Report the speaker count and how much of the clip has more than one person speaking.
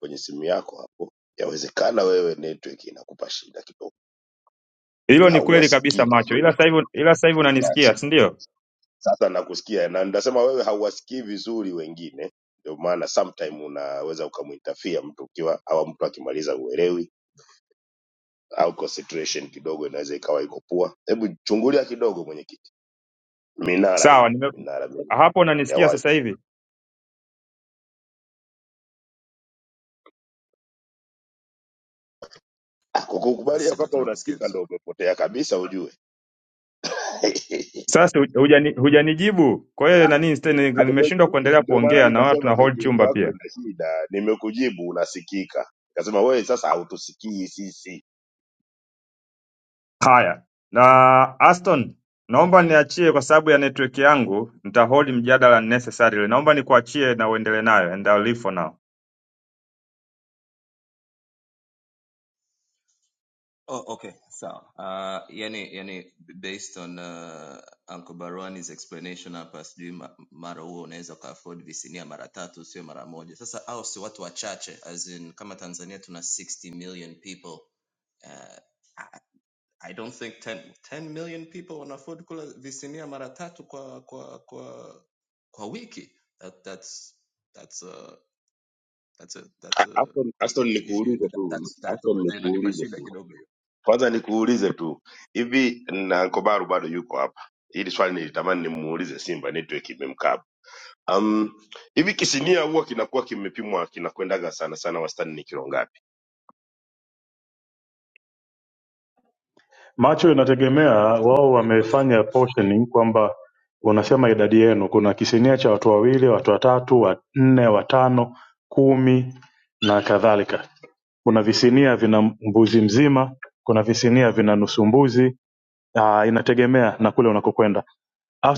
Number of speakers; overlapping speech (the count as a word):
four, about 7%